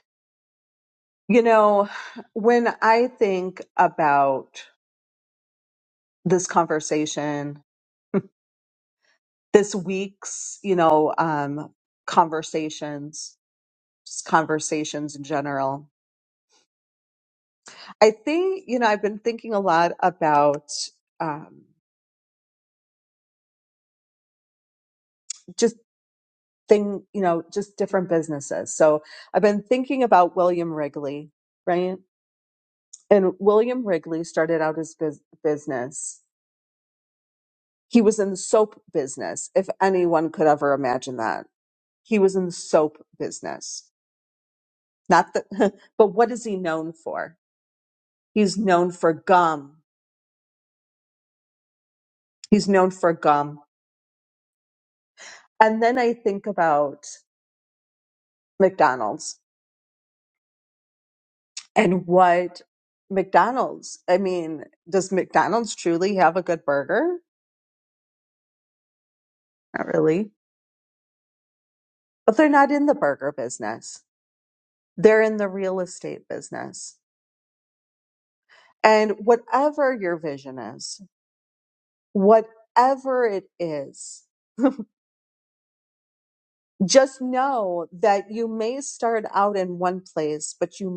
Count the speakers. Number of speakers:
1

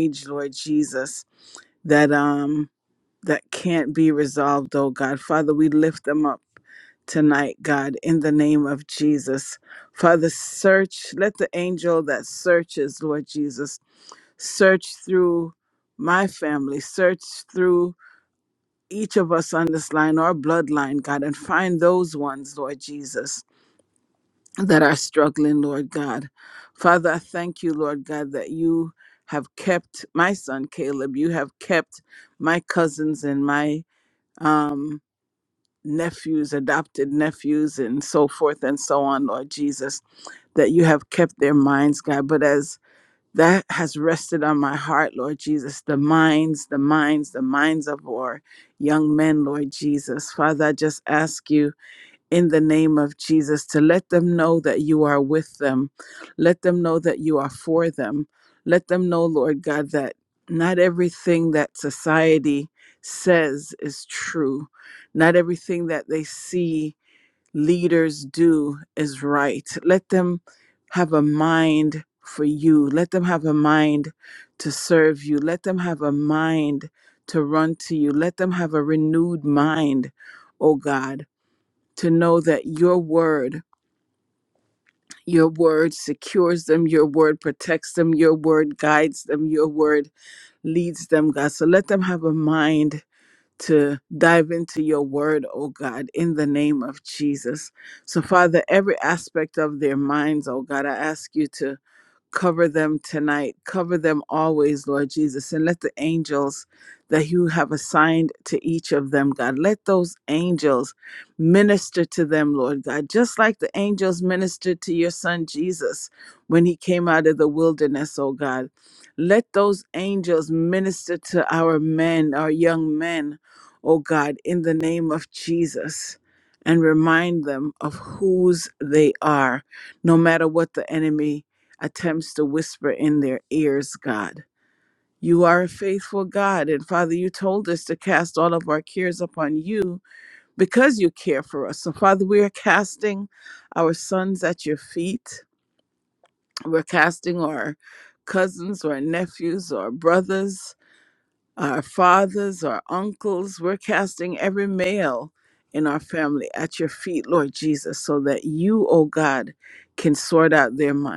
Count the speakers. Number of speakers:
1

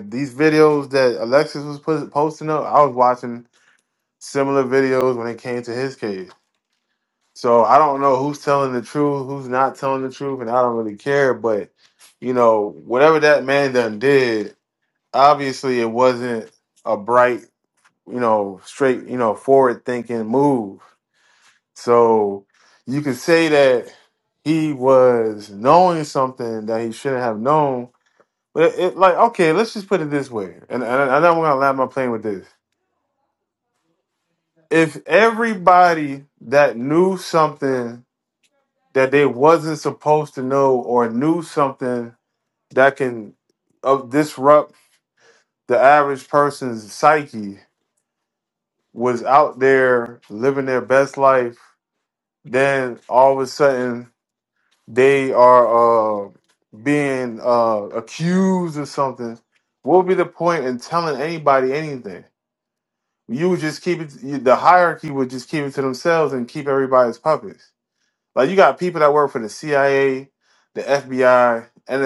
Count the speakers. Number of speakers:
1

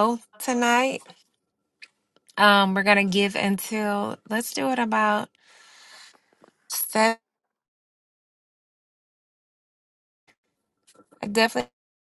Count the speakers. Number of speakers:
1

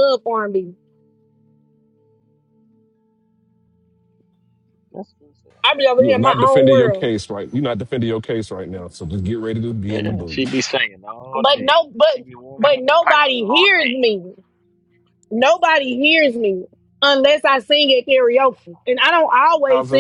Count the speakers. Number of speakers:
3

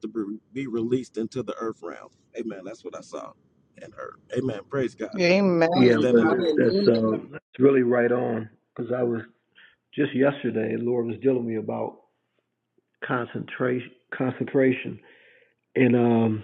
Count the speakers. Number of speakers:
3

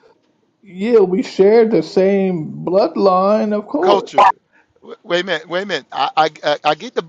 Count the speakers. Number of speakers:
2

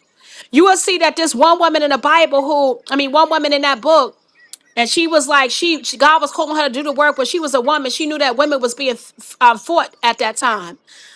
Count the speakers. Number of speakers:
1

